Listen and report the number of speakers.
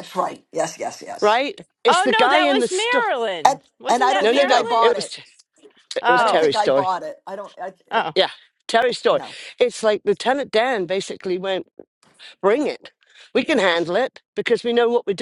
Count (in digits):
3